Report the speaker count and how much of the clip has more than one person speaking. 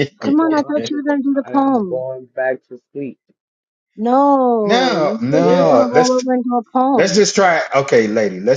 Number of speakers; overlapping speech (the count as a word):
three, about 37%